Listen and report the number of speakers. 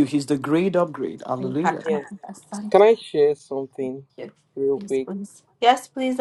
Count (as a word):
three